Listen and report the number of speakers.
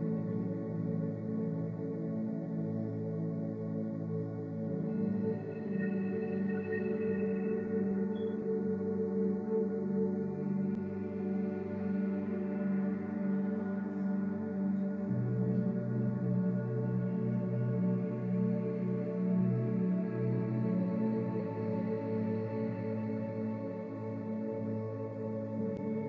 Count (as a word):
zero